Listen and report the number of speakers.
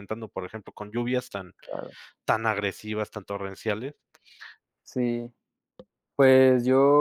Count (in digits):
2